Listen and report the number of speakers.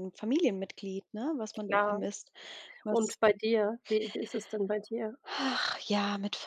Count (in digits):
2